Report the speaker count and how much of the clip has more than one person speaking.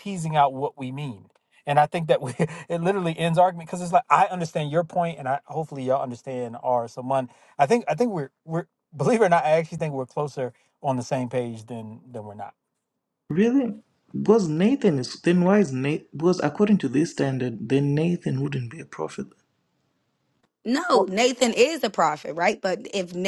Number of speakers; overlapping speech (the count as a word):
three, about 1%